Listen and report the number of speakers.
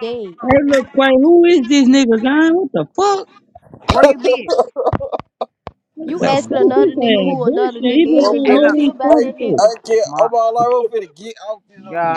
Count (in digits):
4